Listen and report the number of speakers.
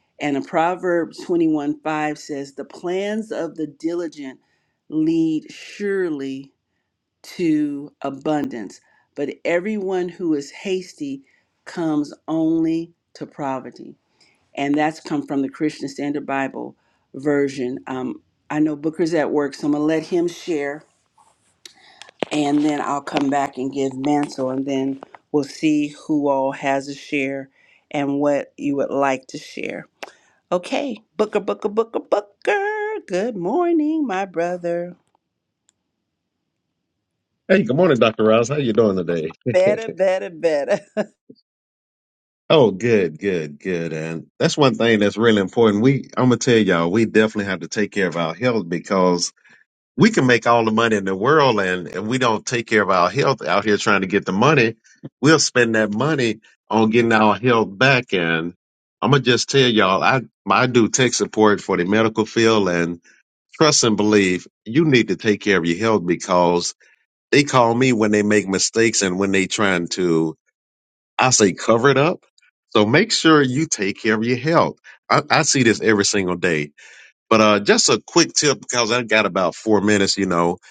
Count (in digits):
2